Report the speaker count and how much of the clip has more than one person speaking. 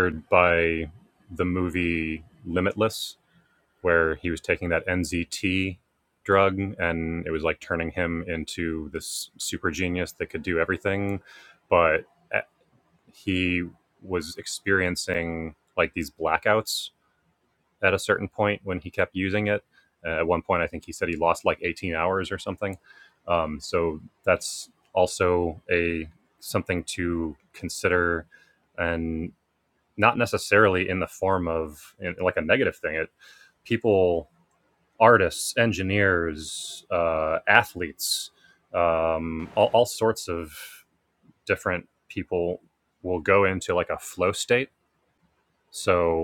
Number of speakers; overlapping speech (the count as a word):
one, no overlap